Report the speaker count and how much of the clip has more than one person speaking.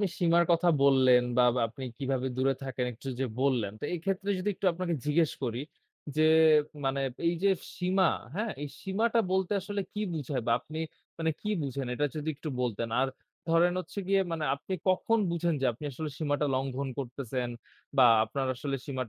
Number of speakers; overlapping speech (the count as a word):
one, no overlap